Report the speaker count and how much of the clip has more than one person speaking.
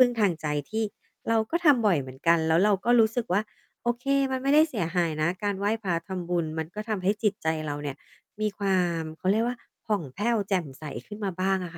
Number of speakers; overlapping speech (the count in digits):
1, no overlap